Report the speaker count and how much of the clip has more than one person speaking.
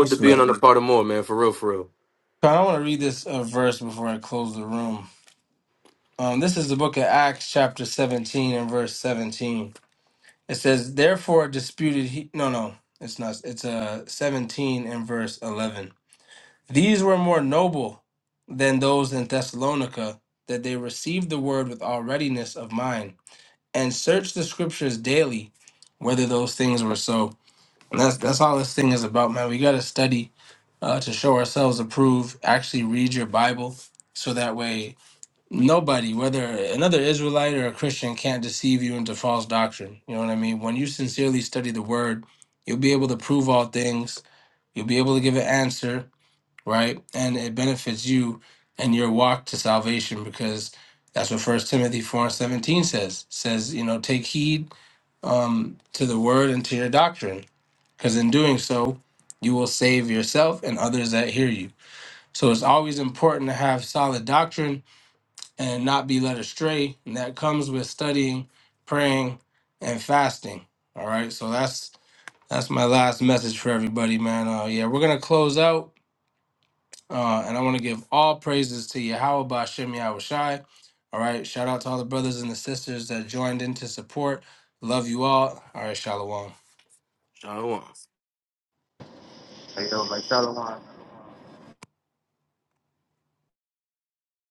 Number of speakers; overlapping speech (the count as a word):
three, under 1%